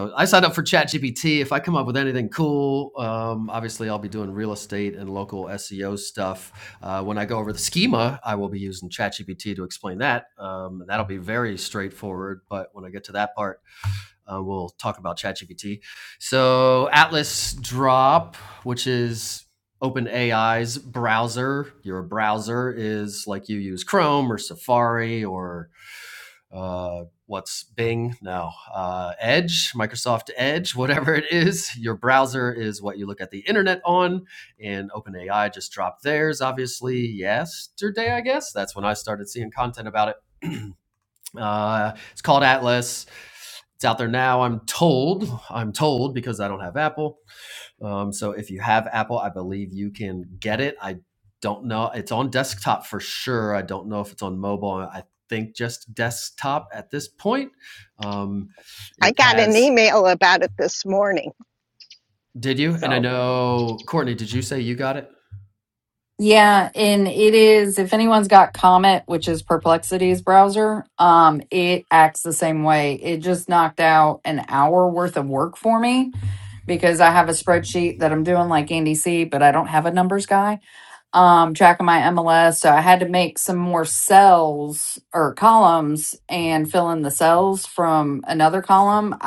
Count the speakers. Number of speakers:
three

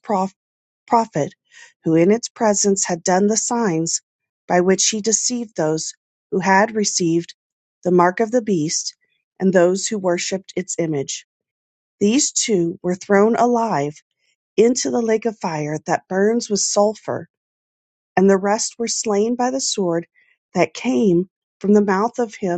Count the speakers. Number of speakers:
one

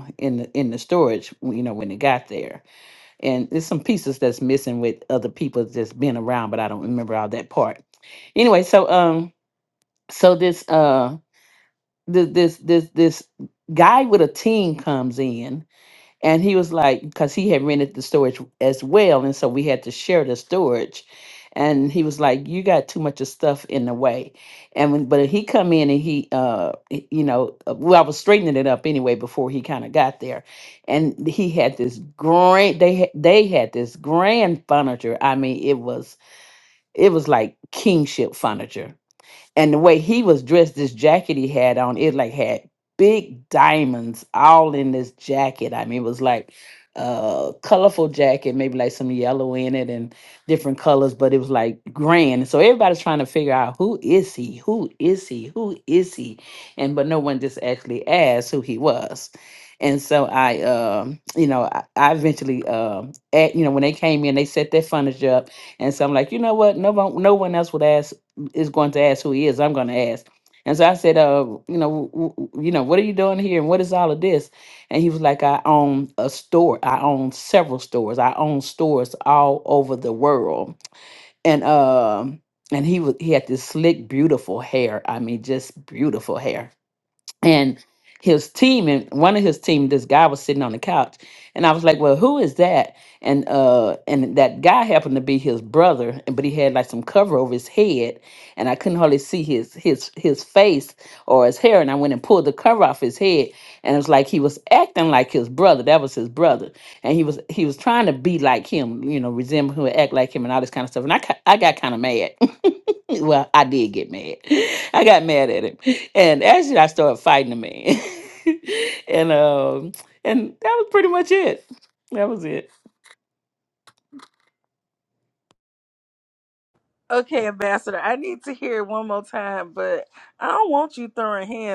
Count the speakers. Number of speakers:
two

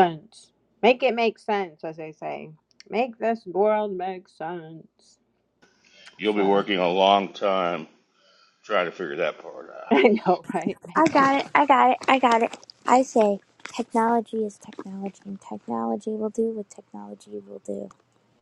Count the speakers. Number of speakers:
three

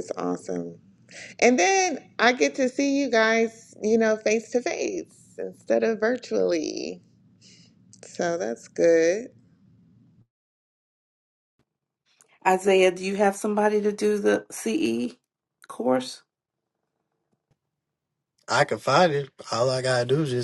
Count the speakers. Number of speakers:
three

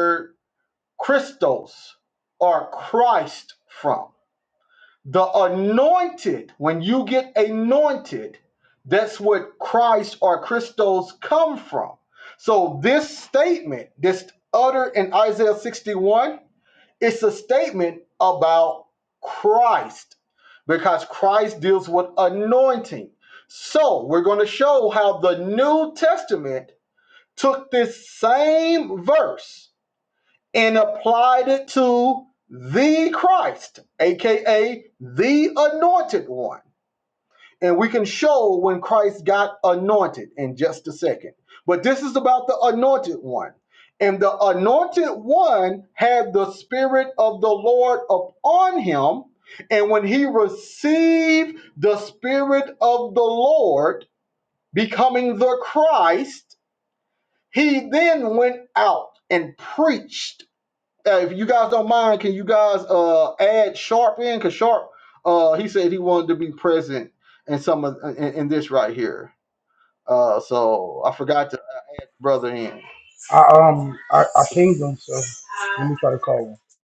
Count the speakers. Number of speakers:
two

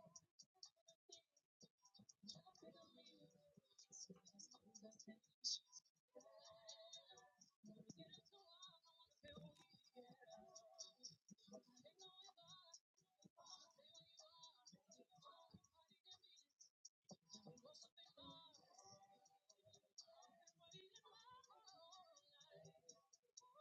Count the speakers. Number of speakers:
zero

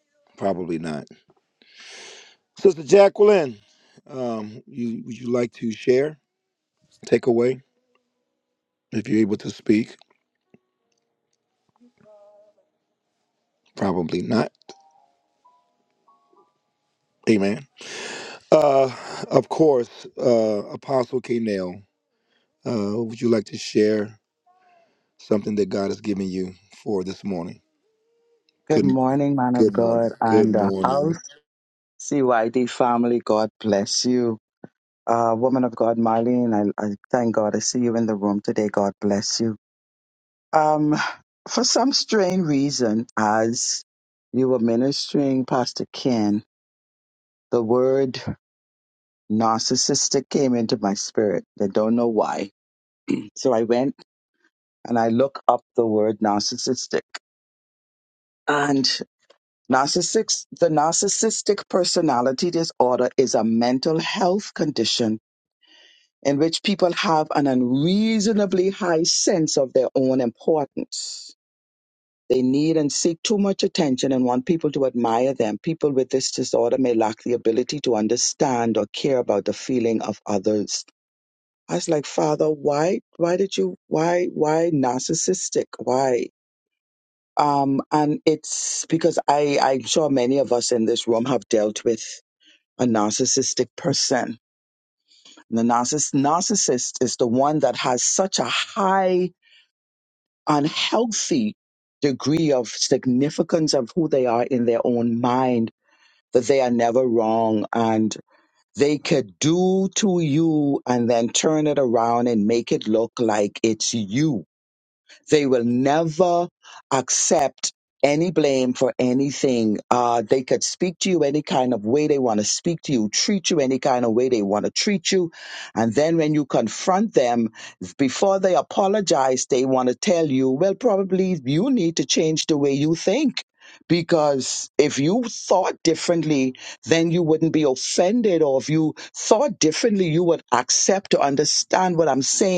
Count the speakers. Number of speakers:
two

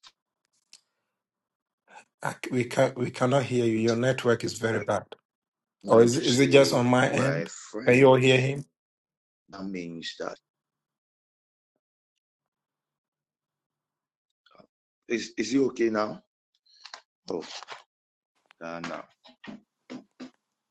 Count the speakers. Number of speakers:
two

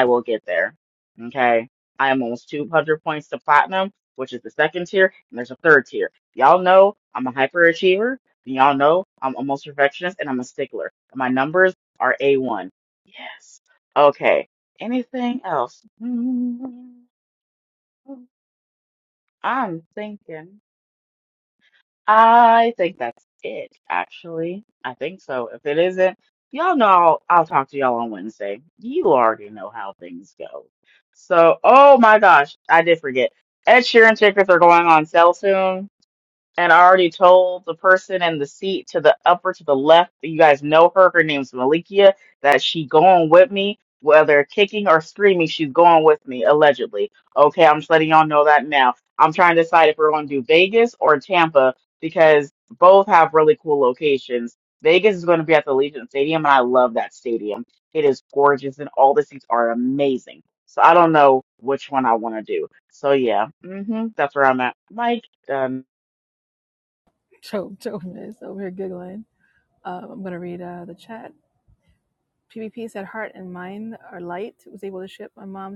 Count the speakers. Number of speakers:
two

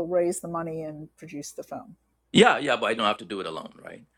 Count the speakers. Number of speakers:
two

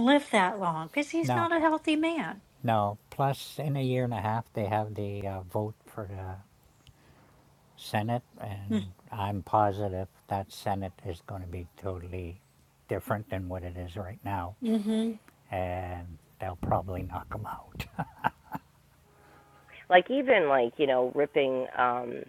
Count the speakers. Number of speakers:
three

